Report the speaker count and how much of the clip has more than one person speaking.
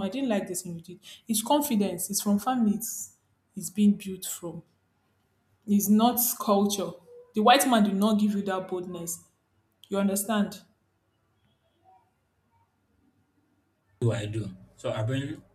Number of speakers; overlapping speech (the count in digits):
2, no overlap